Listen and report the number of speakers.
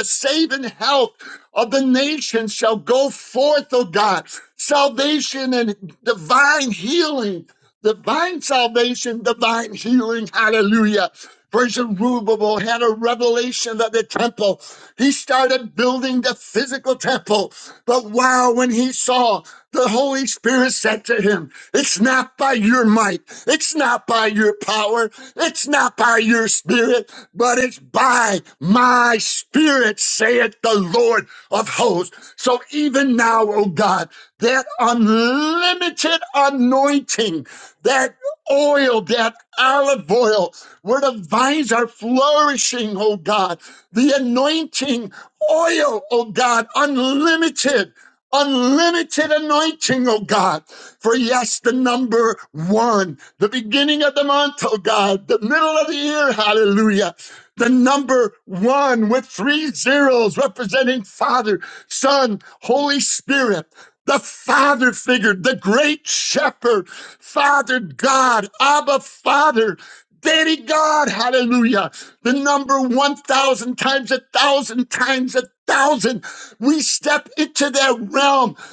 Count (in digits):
1